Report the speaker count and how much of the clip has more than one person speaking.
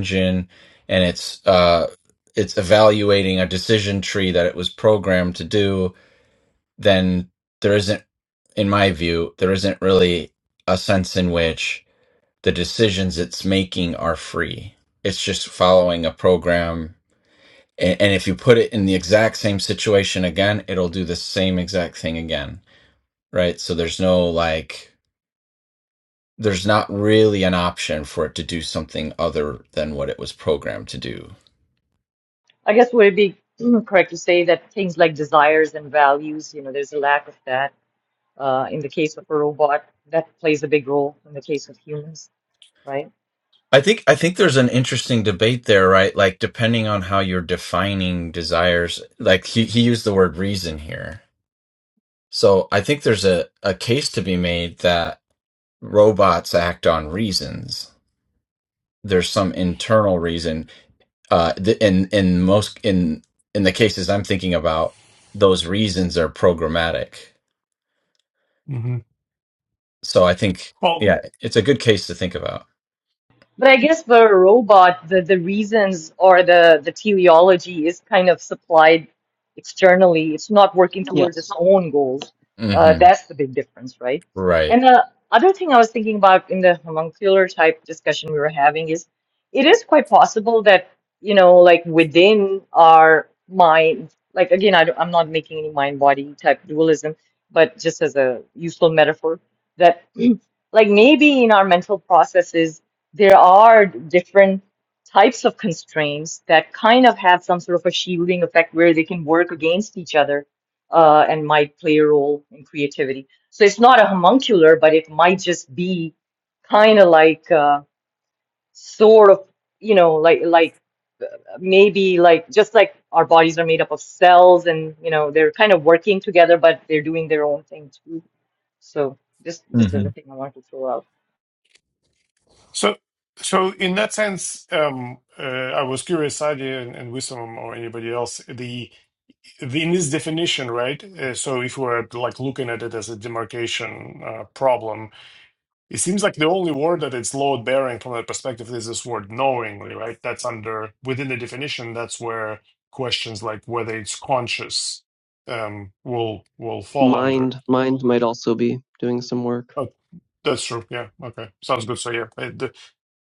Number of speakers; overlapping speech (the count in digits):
4, about 1%